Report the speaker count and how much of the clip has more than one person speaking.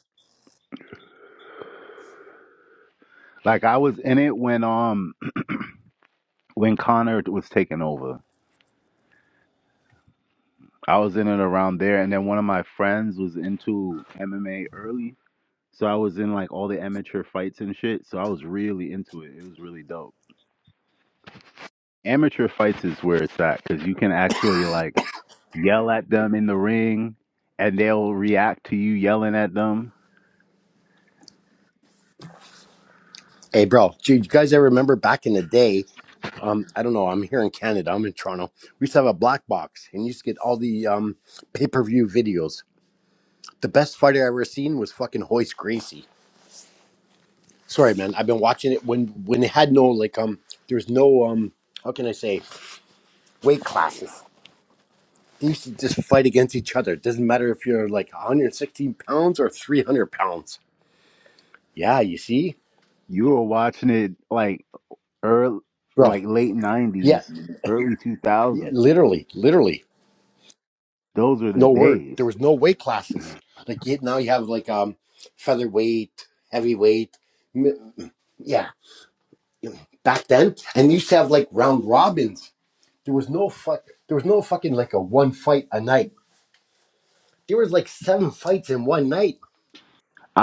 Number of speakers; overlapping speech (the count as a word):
two, about 1%